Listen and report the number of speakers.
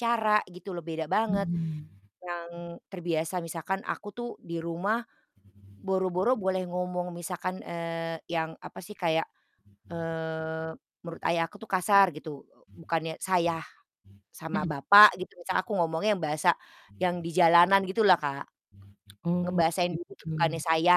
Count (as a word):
two